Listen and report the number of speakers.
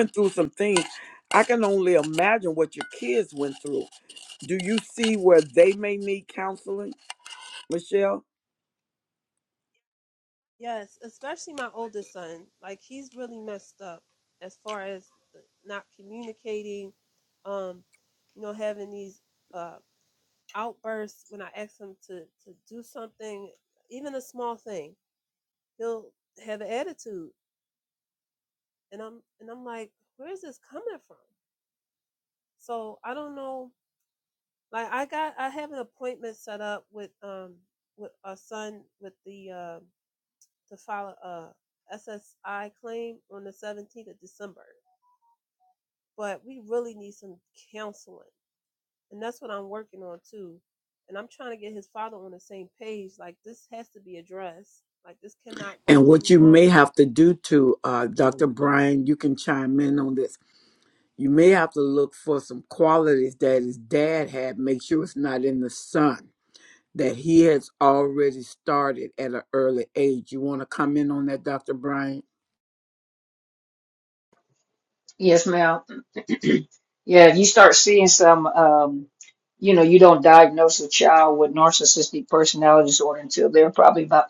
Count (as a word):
three